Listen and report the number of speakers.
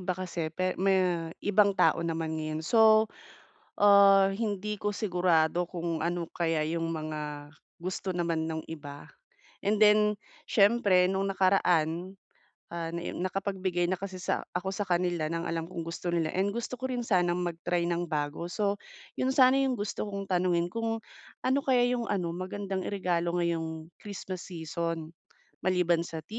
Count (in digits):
1